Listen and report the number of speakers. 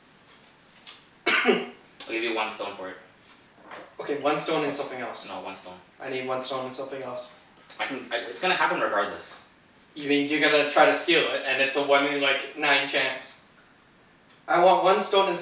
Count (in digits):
2